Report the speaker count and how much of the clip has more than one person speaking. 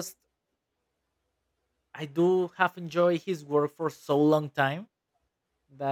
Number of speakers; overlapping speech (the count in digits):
1, no overlap